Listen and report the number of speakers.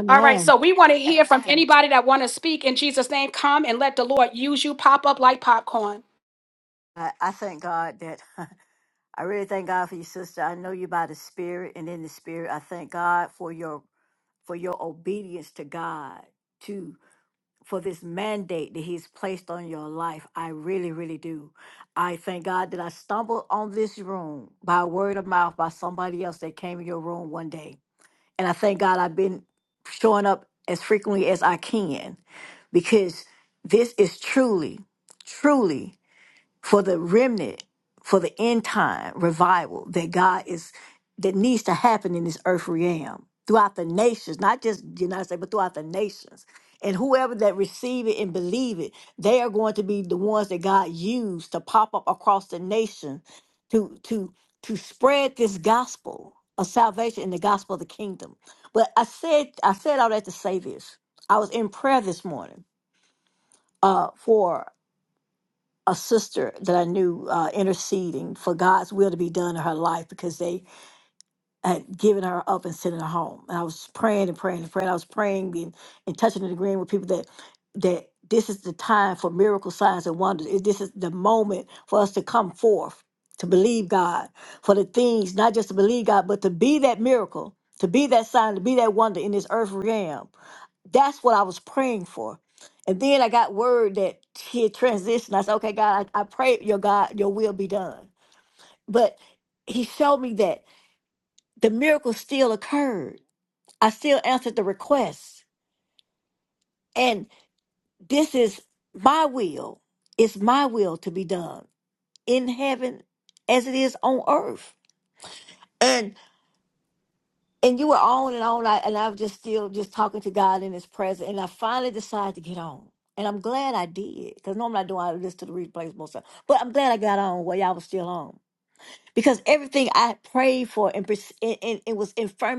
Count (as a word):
two